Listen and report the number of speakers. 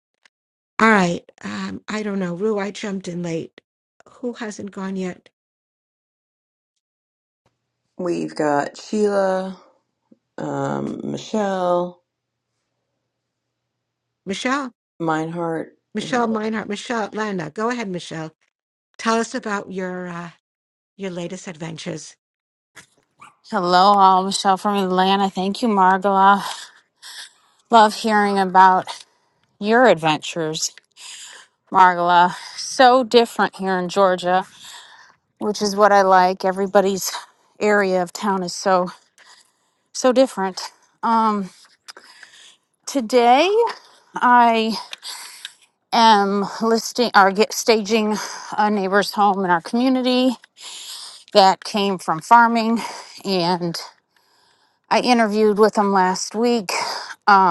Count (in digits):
3